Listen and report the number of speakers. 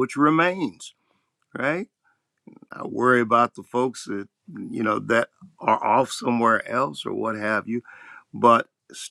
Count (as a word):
one